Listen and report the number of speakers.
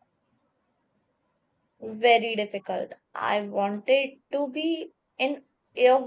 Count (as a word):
one